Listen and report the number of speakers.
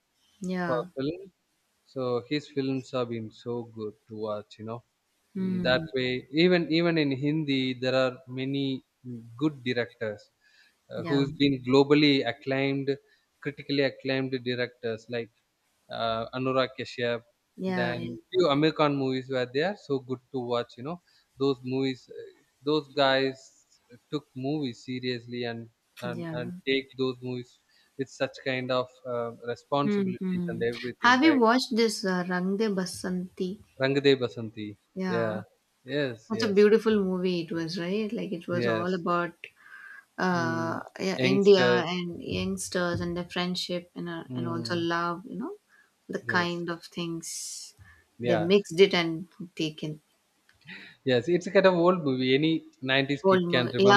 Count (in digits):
2